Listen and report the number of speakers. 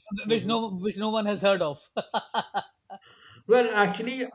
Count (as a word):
two